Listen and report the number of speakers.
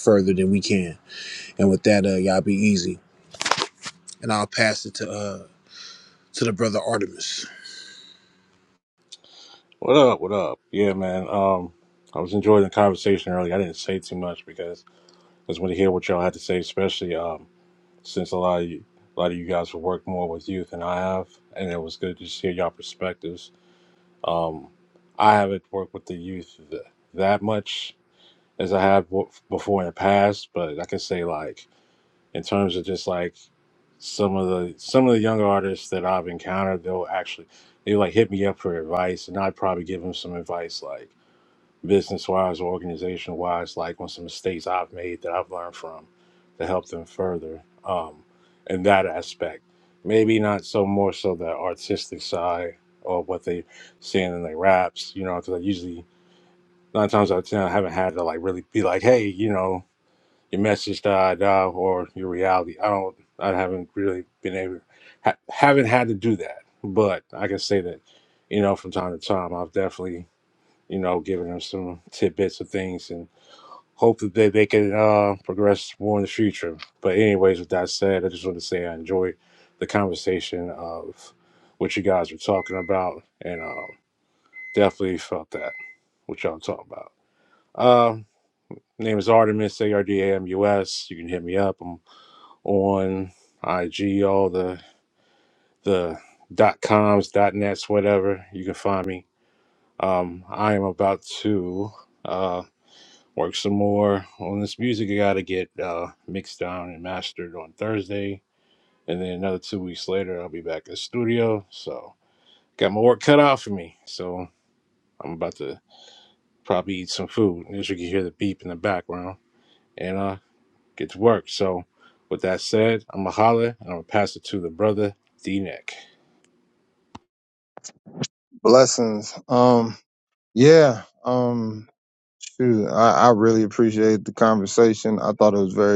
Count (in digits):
3